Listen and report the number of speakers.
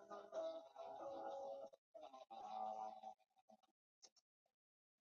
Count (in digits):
0